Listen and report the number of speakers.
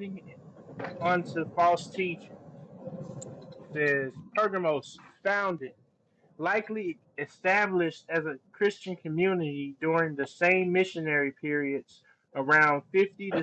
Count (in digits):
1